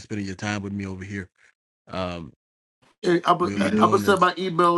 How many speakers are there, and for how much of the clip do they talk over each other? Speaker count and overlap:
2, about 16%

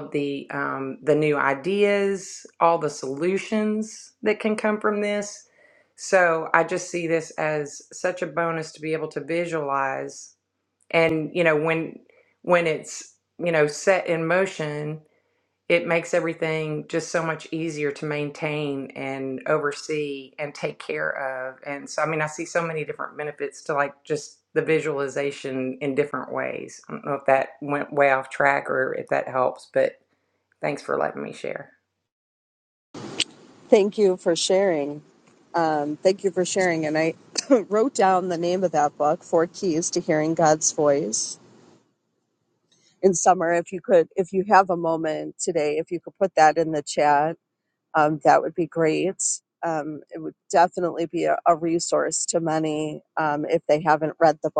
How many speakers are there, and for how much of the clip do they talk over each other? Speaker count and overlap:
2, no overlap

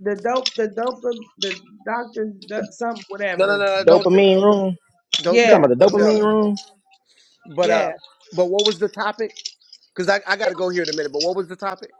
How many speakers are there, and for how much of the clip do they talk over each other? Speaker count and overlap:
3, about 17%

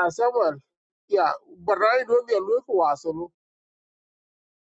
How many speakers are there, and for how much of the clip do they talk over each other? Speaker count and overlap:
1, no overlap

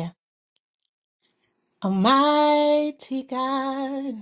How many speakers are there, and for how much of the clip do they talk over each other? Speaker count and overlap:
1, no overlap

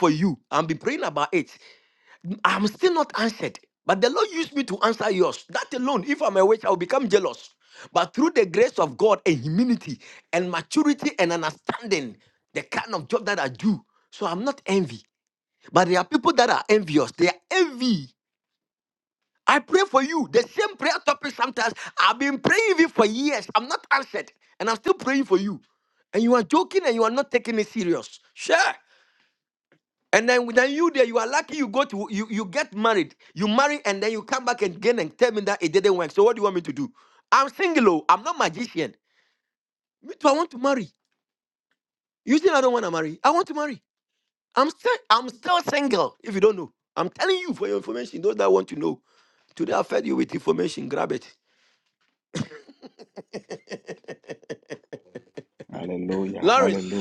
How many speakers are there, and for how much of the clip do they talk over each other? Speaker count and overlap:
2, about 1%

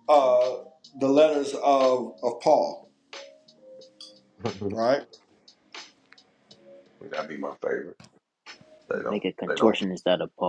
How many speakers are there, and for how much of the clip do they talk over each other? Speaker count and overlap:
3, about 7%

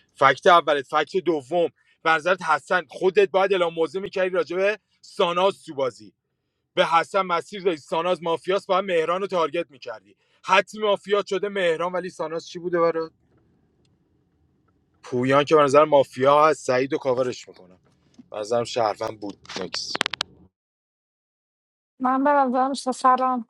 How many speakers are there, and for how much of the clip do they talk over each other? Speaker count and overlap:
2, no overlap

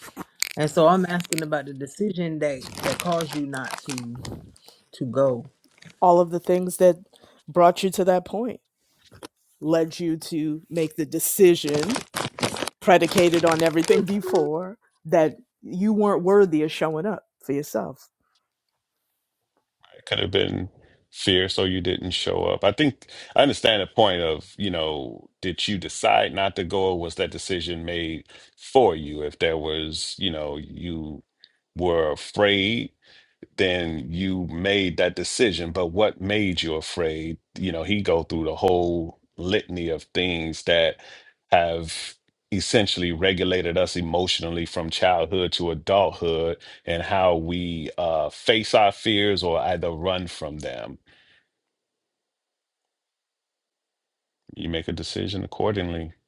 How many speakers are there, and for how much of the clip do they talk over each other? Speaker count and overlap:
3, no overlap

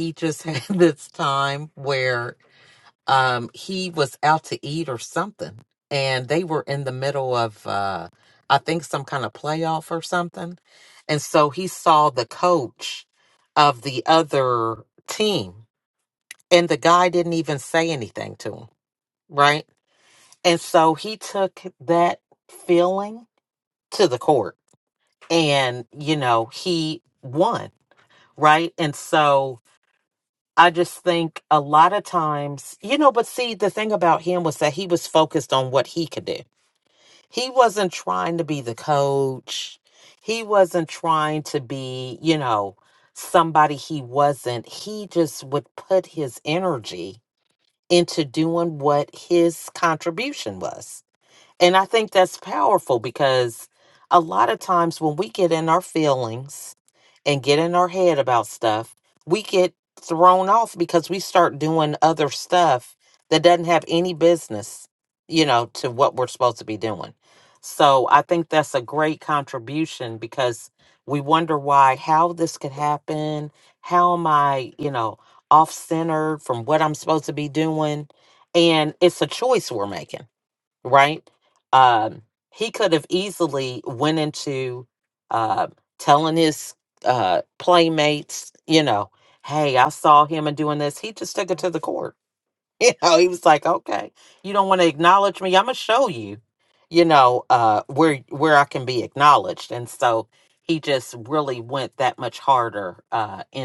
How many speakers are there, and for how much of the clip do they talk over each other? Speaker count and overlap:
1, no overlap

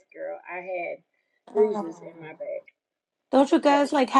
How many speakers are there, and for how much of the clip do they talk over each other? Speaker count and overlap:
2, about 15%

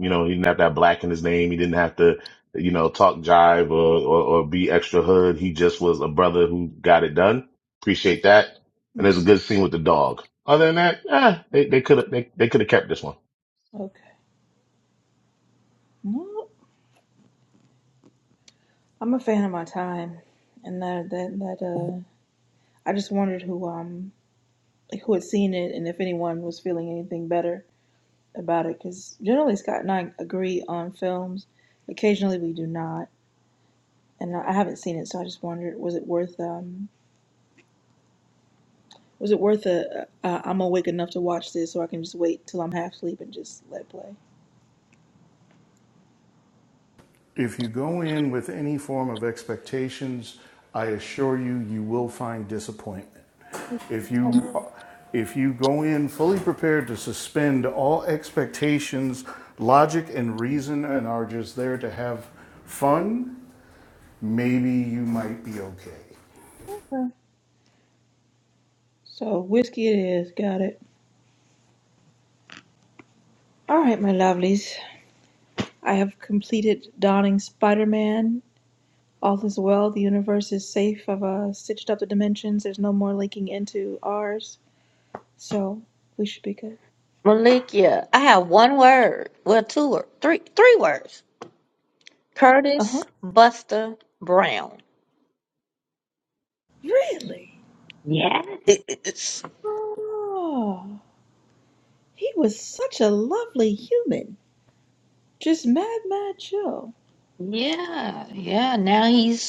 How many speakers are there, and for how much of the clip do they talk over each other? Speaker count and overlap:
4, under 1%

